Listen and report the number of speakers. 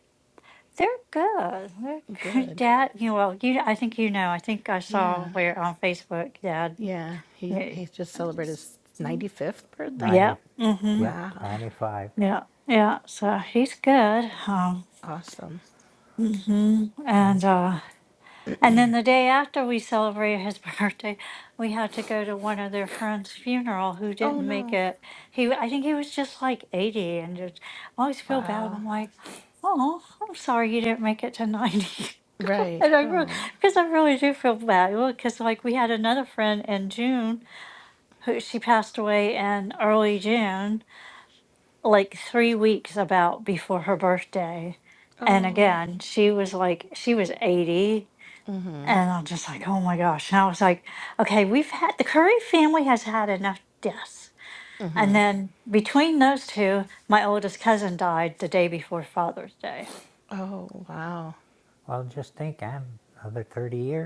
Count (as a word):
three